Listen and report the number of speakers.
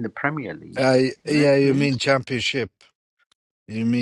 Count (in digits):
2